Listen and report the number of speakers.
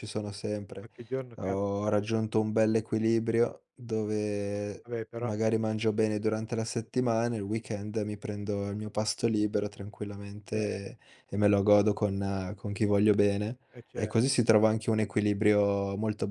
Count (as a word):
two